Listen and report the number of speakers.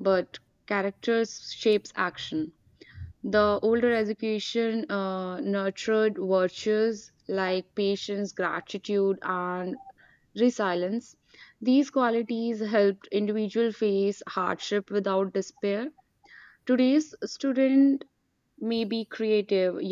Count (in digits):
1